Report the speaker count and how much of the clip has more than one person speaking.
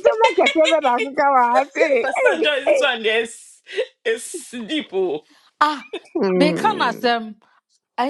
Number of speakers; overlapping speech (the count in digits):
3, about 20%